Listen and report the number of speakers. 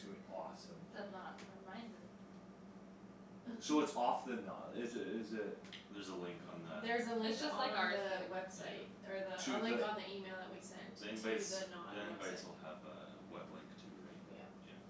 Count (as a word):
four